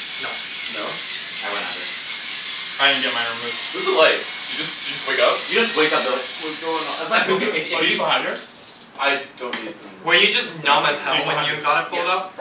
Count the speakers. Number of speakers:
four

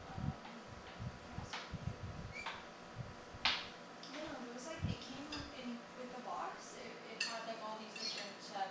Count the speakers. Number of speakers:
one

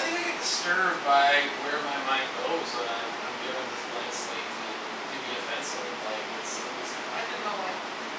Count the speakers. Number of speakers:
one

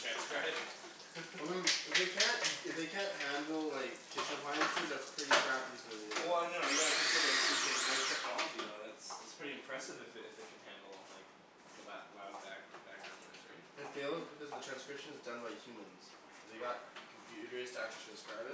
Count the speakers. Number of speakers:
two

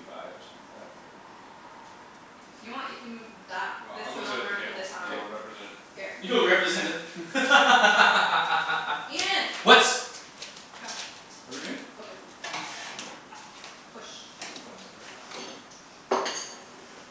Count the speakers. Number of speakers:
three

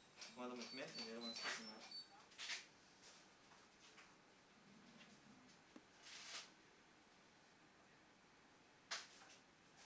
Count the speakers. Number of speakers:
one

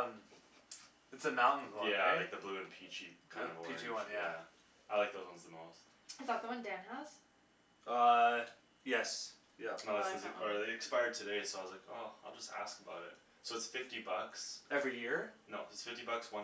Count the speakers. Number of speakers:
three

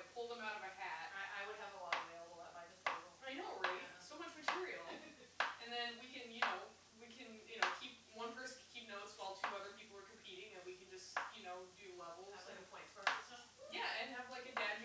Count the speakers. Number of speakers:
two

